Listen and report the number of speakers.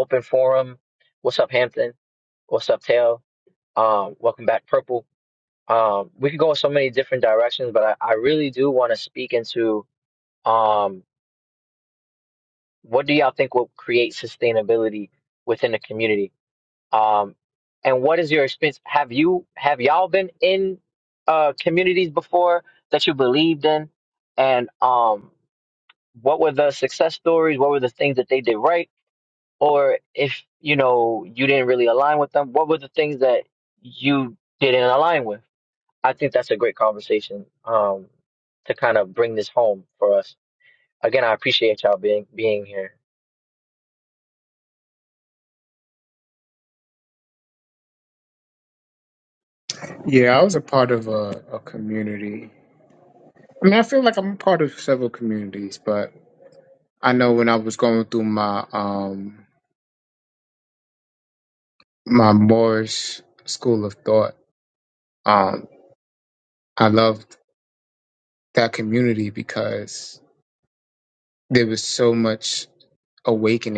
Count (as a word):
two